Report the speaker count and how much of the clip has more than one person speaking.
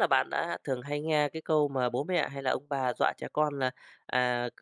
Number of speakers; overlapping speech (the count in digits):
1, no overlap